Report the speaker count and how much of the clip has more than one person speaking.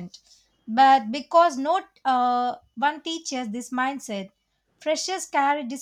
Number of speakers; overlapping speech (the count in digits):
1, no overlap